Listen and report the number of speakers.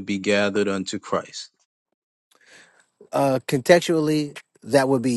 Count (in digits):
2